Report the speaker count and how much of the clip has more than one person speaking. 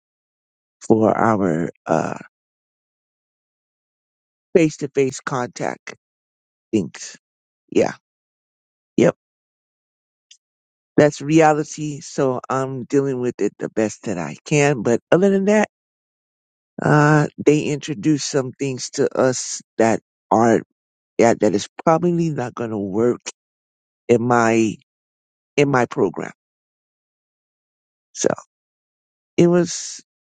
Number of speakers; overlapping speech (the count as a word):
one, no overlap